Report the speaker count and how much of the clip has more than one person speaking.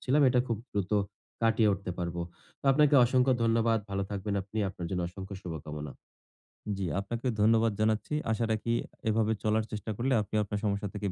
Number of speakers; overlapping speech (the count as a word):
two, no overlap